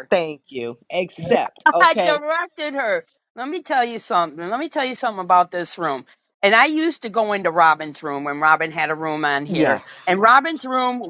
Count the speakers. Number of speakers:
two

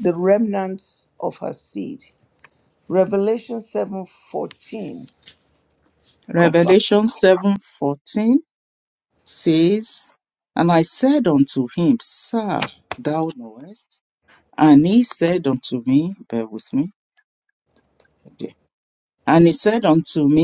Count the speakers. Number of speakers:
two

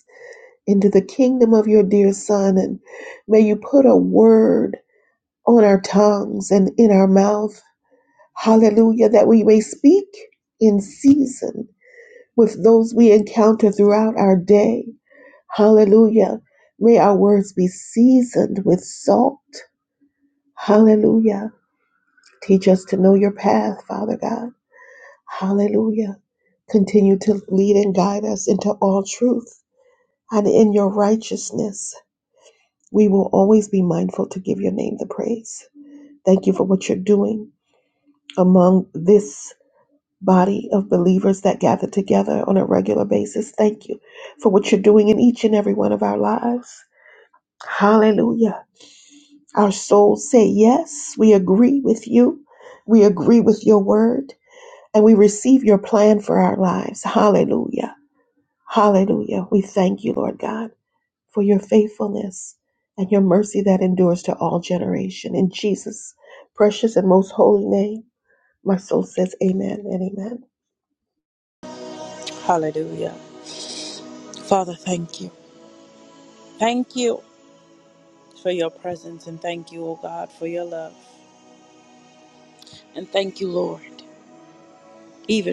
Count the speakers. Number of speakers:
two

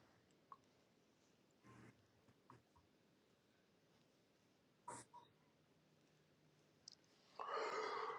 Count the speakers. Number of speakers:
zero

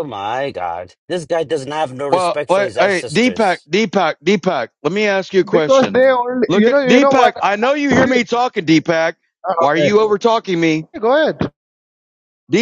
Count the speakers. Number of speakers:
three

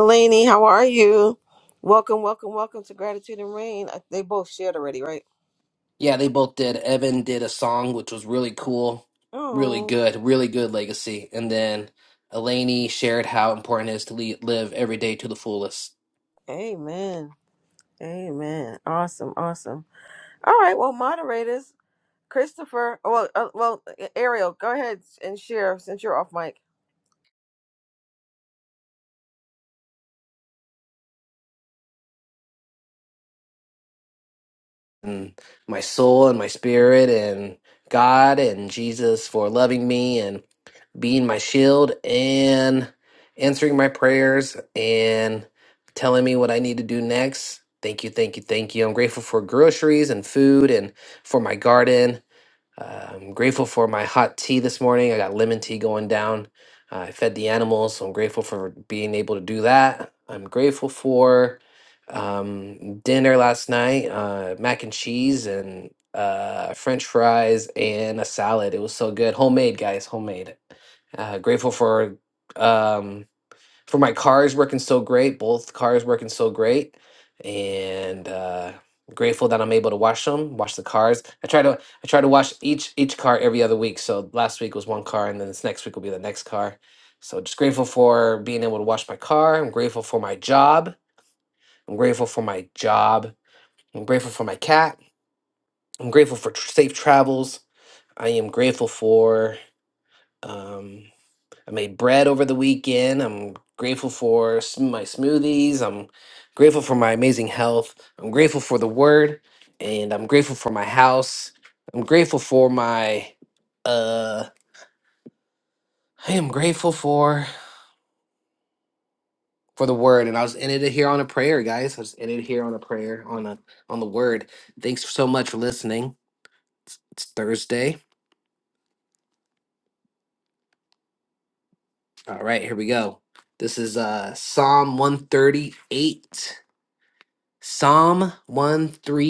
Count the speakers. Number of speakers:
two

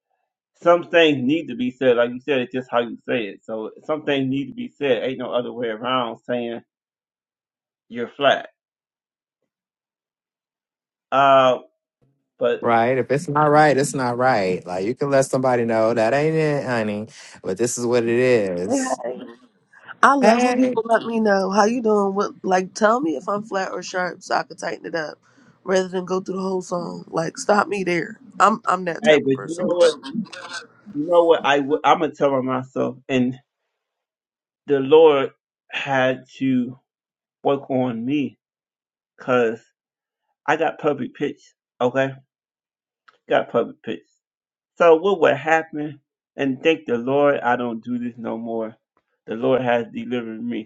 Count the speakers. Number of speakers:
three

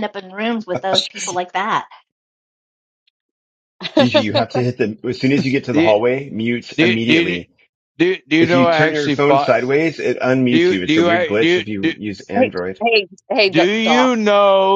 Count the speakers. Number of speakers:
four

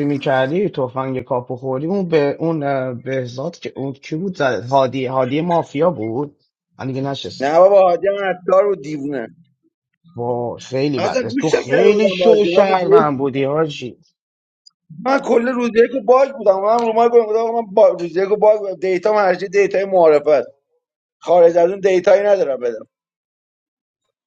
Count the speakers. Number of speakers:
two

